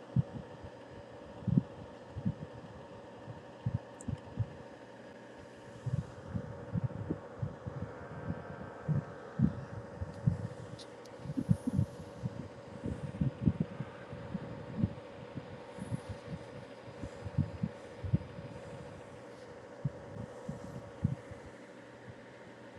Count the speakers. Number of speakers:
0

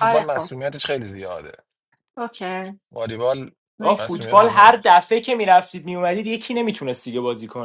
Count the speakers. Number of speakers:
3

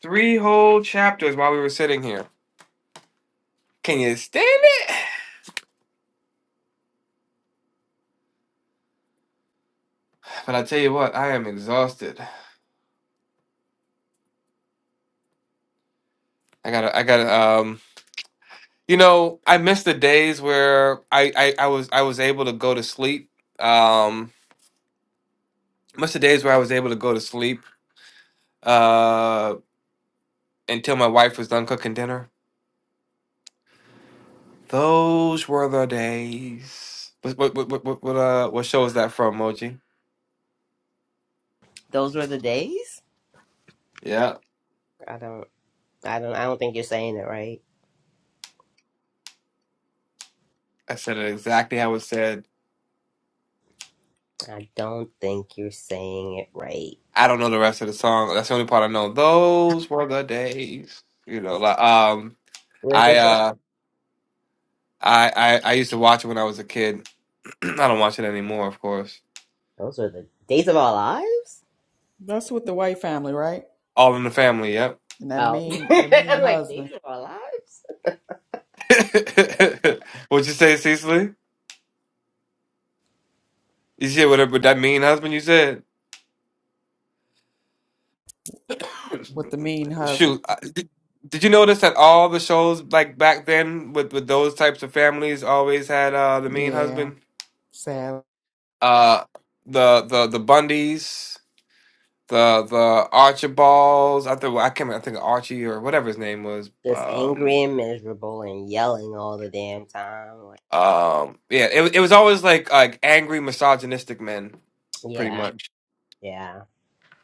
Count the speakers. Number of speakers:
3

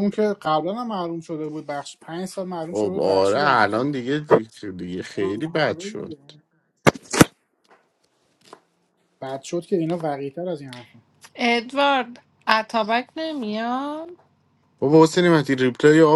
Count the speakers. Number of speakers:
3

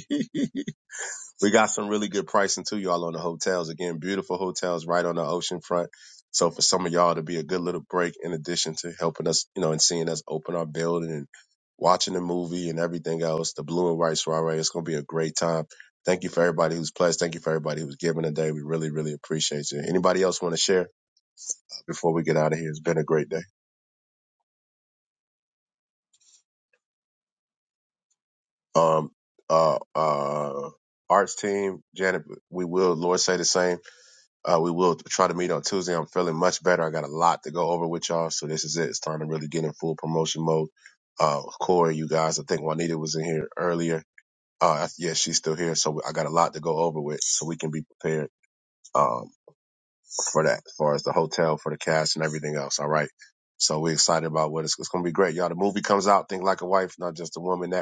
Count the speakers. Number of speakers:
1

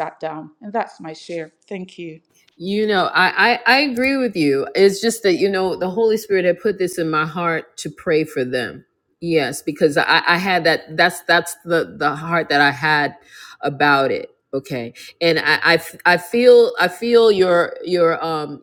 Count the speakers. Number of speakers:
2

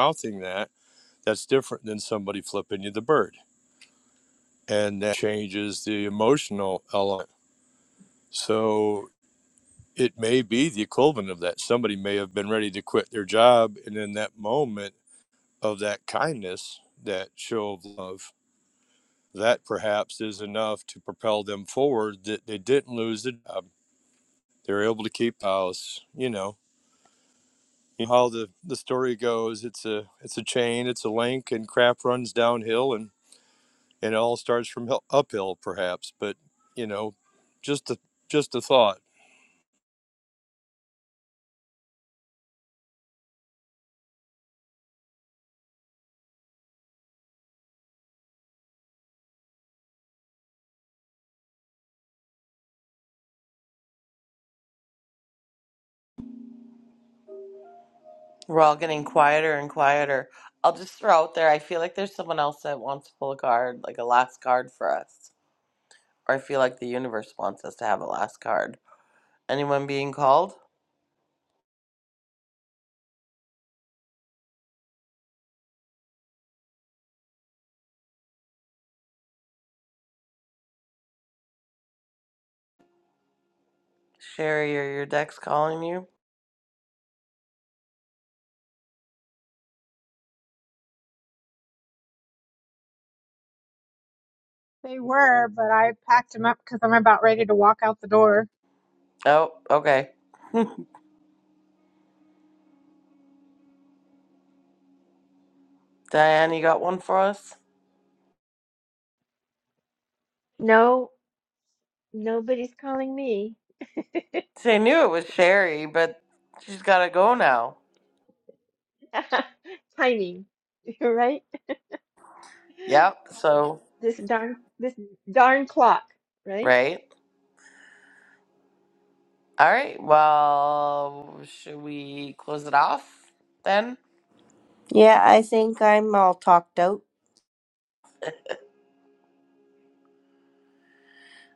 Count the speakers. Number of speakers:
5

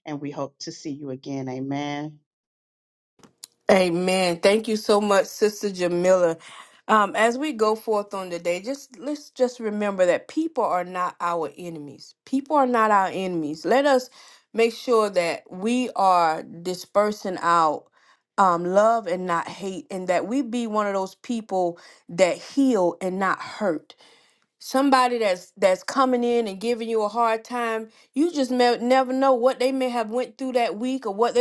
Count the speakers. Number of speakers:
2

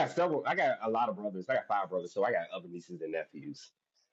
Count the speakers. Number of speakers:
1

